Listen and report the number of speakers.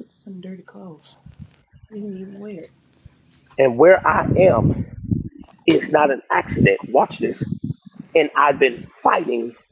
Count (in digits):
2